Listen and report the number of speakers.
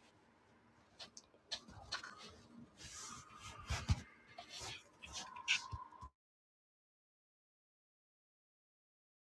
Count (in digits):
0